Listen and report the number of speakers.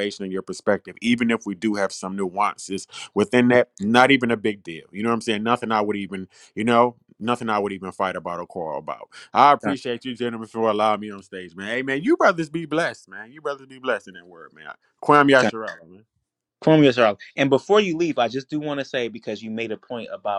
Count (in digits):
2